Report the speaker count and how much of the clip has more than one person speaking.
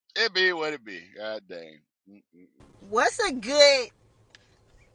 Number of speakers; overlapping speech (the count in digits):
2, no overlap